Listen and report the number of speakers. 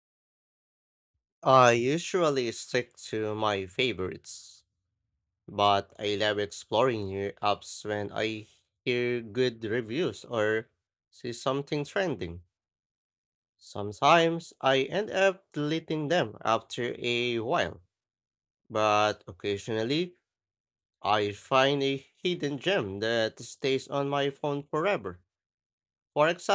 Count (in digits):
1